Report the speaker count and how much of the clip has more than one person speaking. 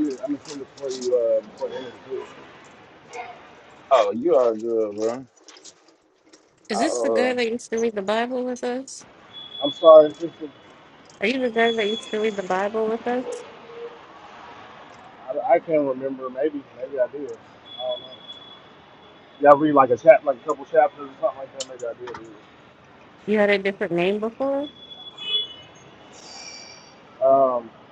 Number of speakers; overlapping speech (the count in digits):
3, about 2%